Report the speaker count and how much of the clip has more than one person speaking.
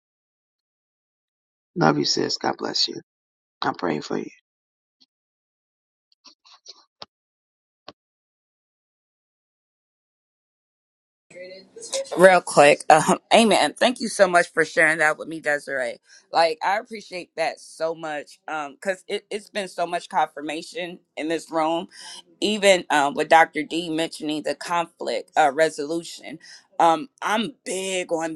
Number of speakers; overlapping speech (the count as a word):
two, no overlap